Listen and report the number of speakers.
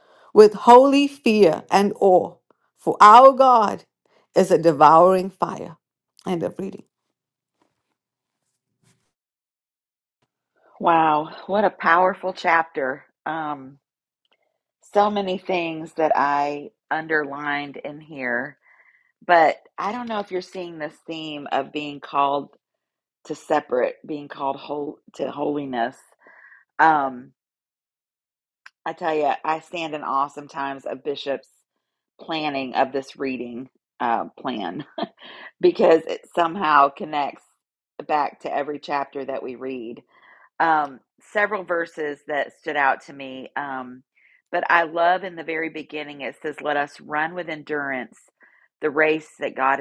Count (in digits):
2